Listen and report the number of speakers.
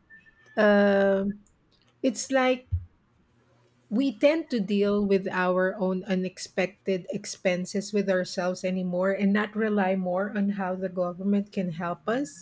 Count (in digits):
1